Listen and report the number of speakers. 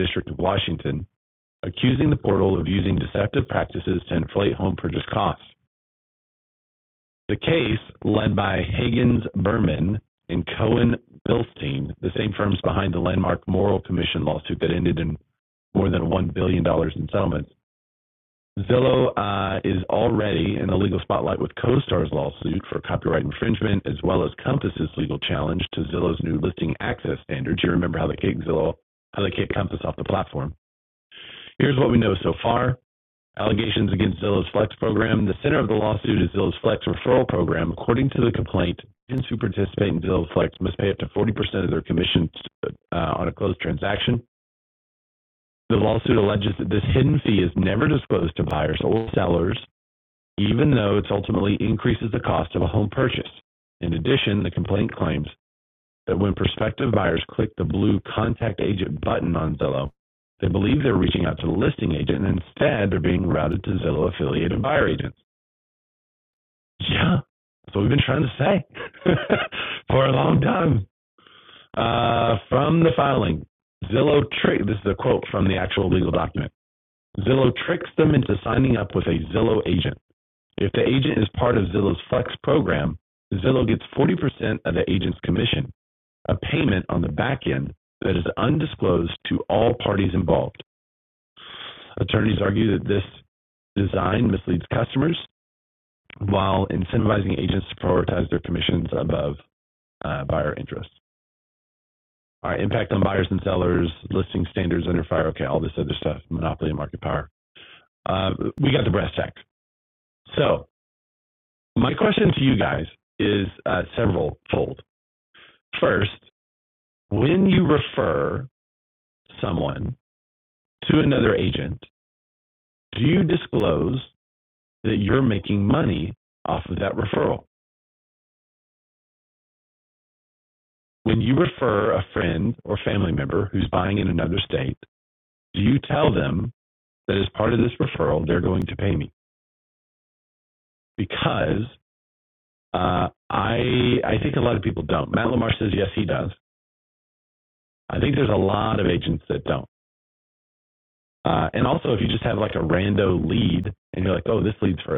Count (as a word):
one